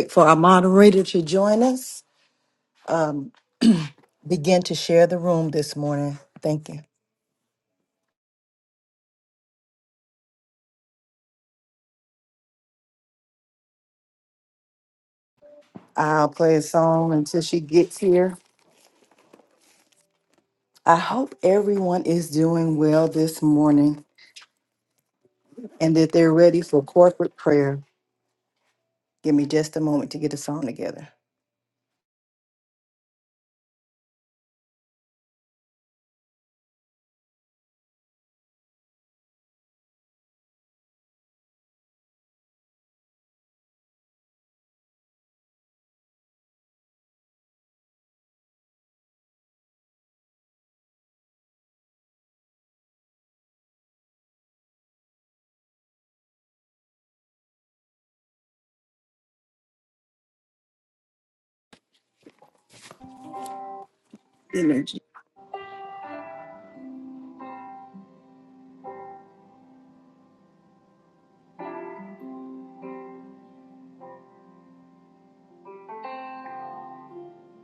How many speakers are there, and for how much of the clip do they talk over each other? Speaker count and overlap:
1, no overlap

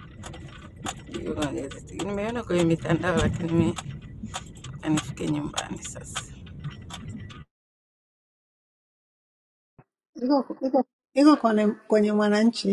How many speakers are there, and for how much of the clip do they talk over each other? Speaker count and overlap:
2, no overlap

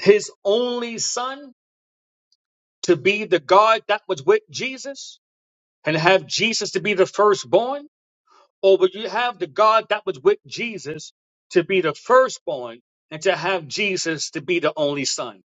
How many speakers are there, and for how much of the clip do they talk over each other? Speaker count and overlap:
1, no overlap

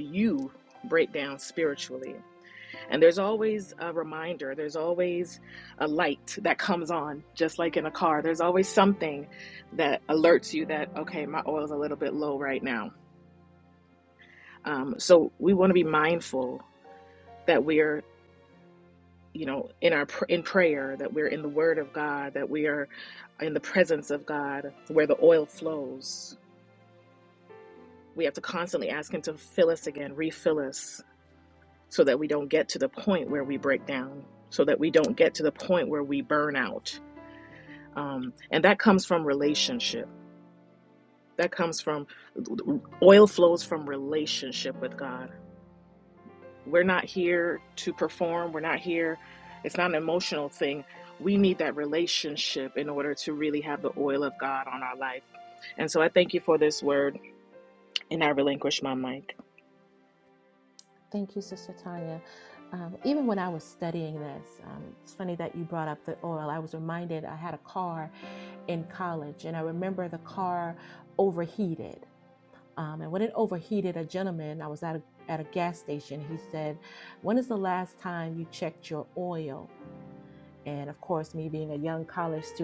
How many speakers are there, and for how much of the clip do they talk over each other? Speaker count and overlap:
2, no overlap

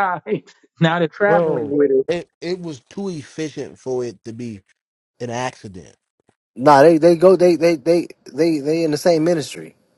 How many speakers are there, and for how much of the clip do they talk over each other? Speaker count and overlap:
3, about 5%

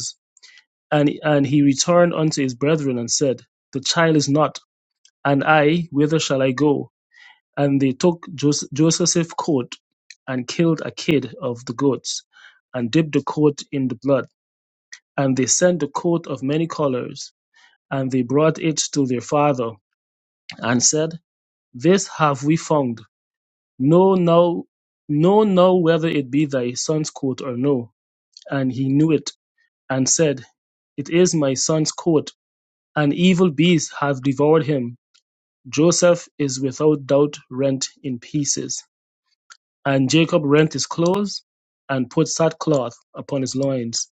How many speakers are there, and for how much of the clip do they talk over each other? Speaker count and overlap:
1, no overlap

